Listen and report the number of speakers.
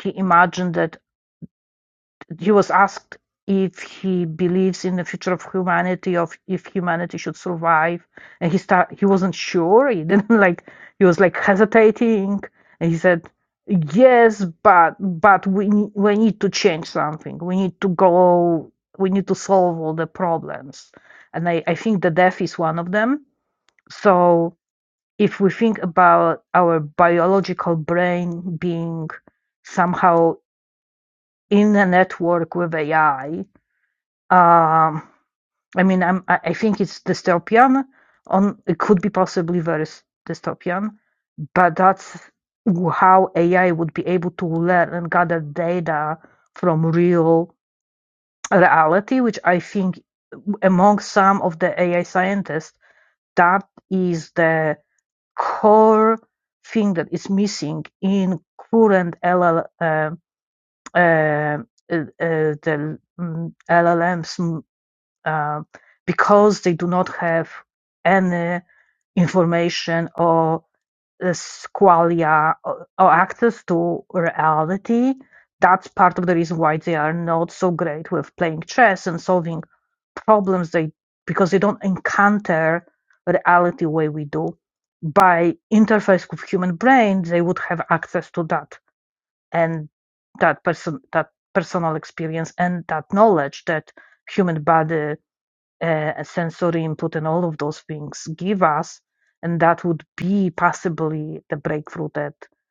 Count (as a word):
one